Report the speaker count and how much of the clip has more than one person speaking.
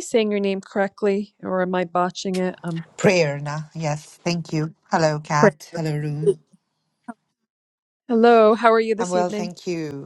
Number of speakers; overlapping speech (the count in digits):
2, about 6%